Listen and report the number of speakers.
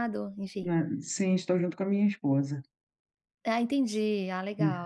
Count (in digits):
2